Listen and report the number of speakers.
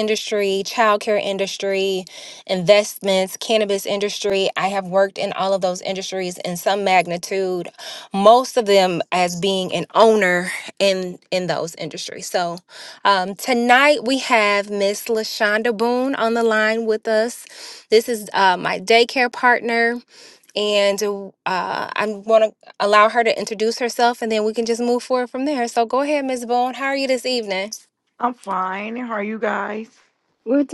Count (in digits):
2